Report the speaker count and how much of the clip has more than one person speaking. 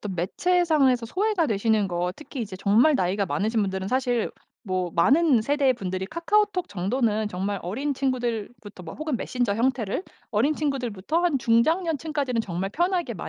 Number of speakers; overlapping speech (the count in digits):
1, no overlap